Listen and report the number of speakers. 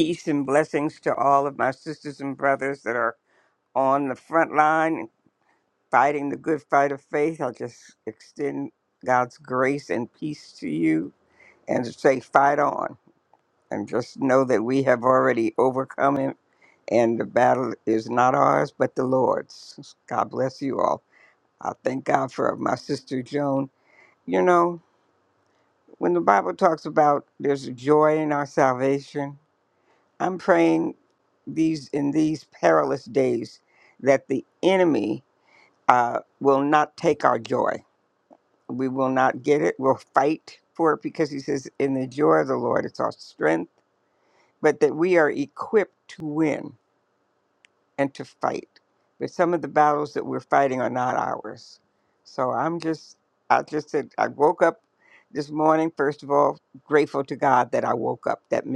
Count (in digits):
1